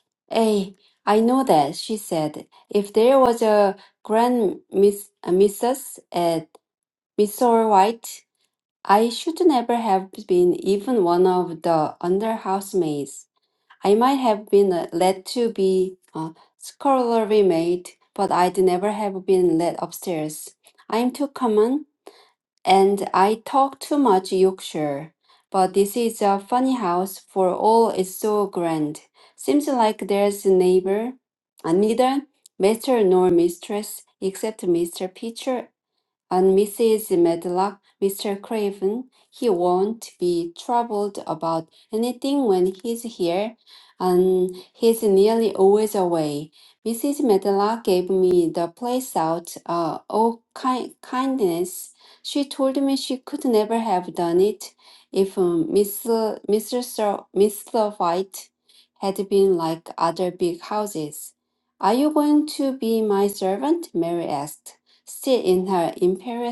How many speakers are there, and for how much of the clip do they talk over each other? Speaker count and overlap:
one, no overlap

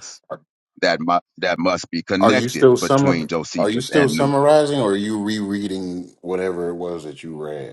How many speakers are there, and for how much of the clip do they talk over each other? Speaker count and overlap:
two, about 27%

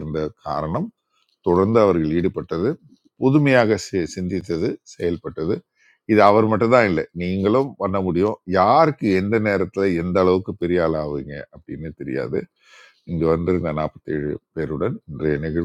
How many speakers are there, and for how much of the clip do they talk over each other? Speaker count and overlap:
one, no overlap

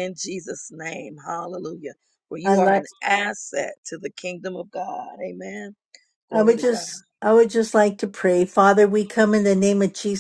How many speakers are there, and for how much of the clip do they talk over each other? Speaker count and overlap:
two, about 8%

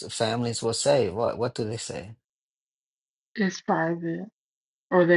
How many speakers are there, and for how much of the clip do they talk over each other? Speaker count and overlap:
two, no overlap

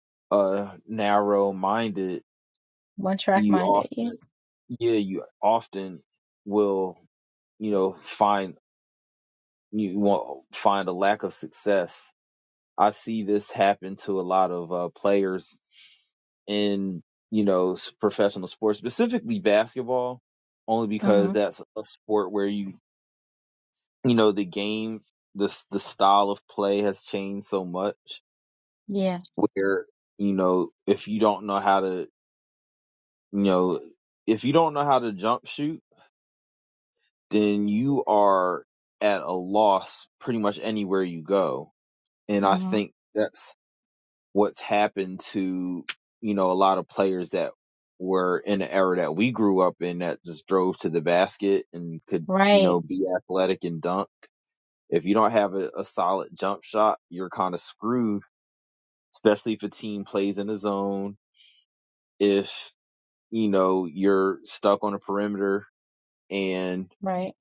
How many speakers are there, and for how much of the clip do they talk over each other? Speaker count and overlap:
two, about 3%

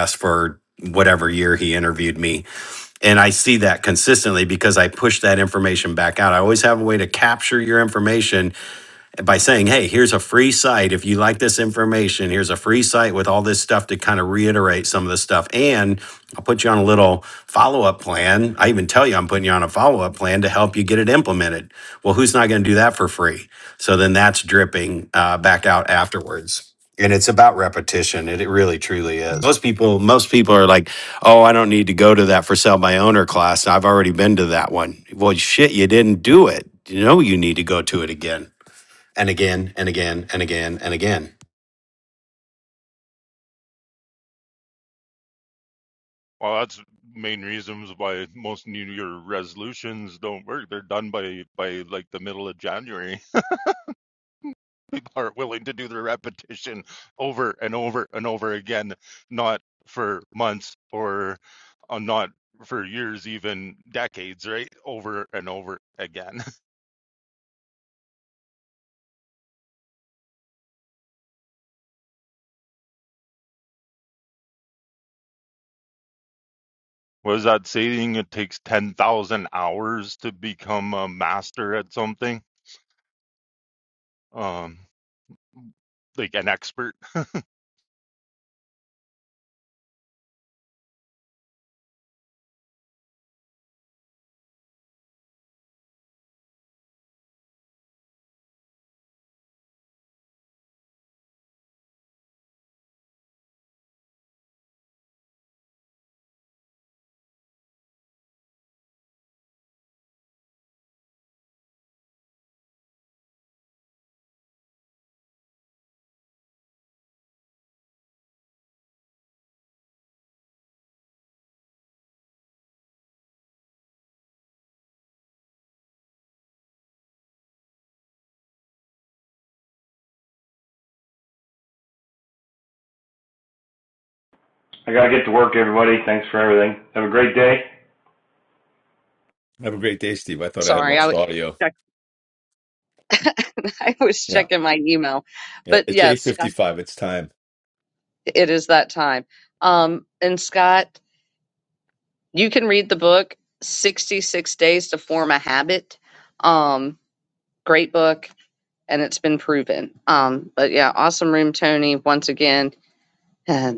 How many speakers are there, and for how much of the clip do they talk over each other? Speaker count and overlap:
five, about 1%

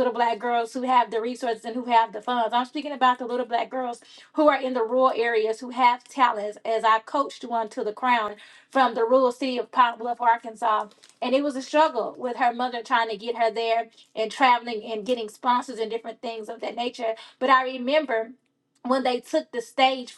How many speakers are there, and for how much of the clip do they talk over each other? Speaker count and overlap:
one, no overlap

